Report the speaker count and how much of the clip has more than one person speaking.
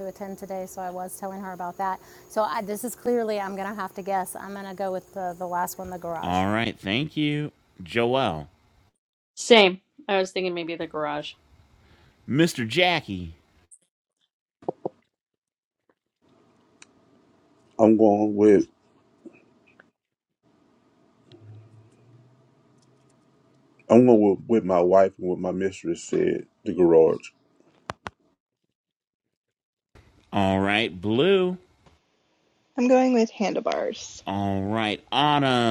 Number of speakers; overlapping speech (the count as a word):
five, about 1%